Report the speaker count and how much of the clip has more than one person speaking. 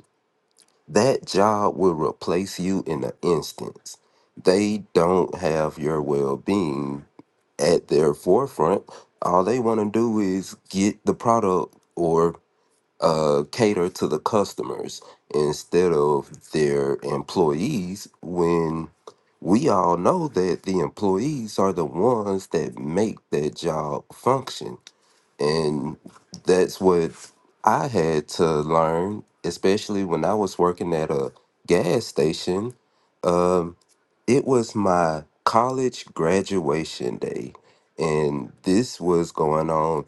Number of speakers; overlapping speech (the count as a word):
one, no overlap